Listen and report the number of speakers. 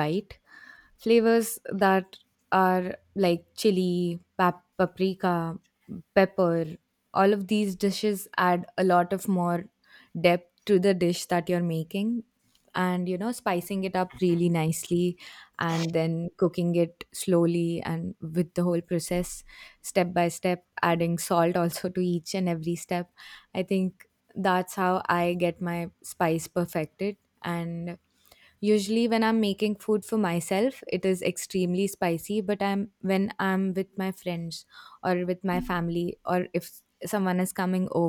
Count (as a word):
one